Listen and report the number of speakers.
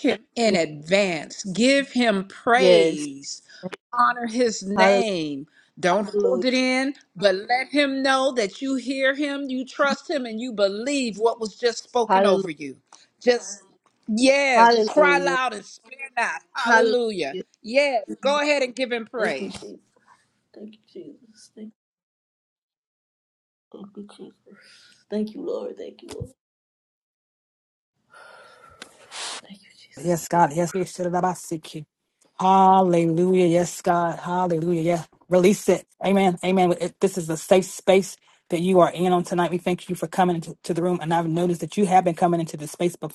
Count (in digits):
3